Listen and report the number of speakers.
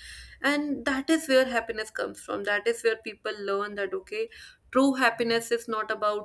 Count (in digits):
1